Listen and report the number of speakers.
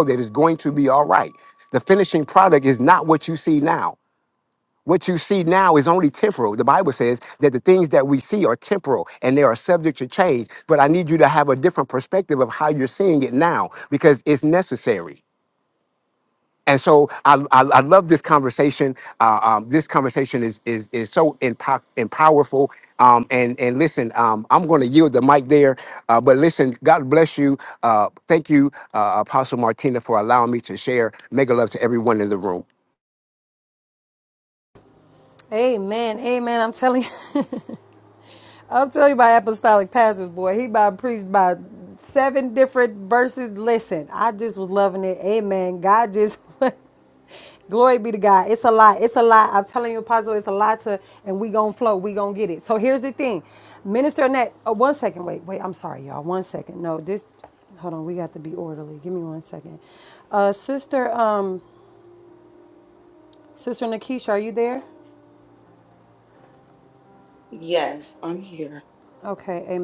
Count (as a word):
three